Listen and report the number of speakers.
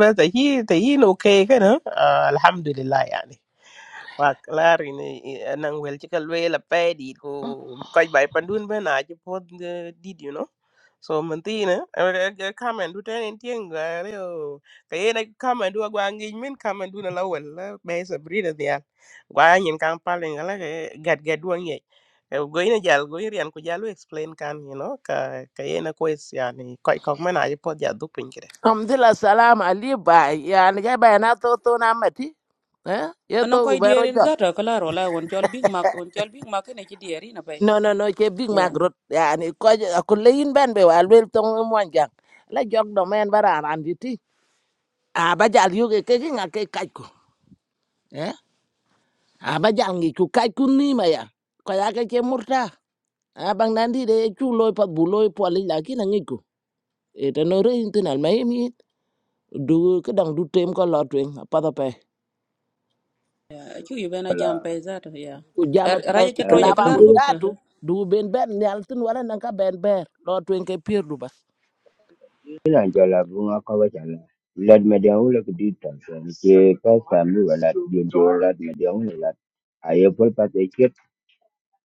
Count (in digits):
4